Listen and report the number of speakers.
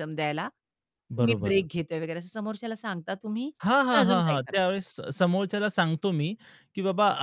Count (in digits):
2